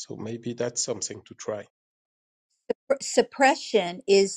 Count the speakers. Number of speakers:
two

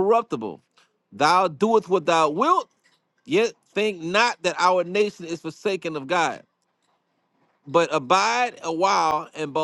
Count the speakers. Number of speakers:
one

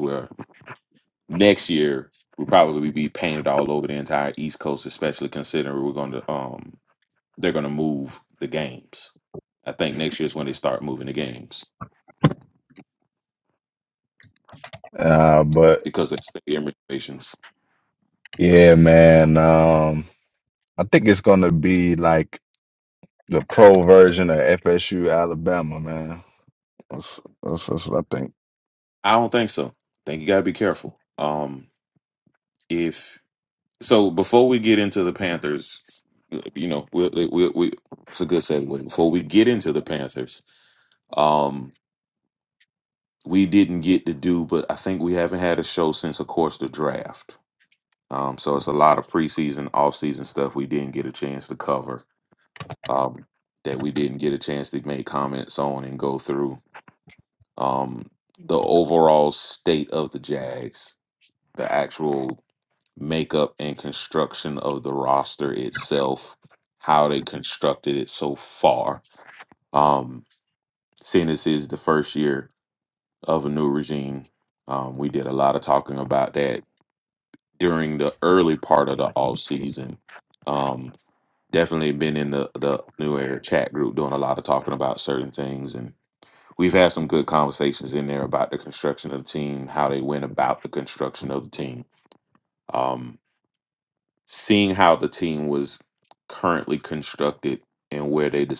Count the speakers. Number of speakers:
two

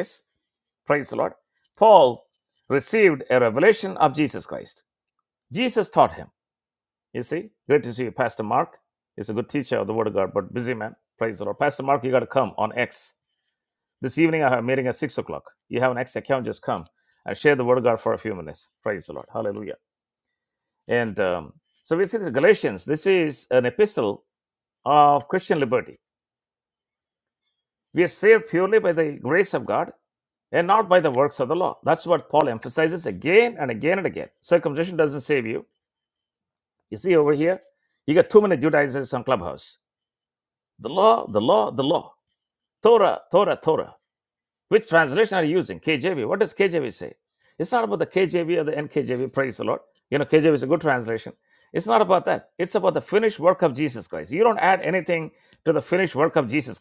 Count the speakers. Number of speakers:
one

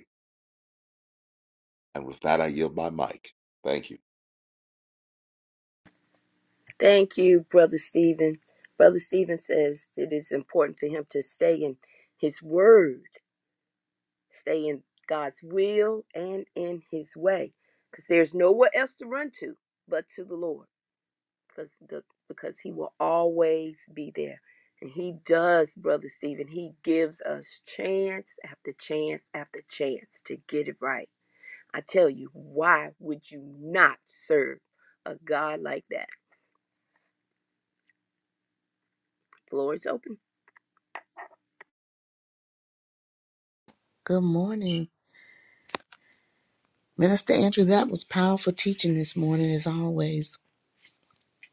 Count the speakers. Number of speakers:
three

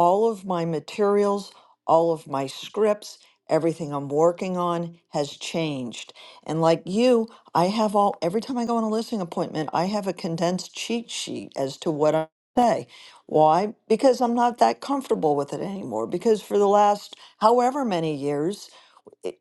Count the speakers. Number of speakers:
one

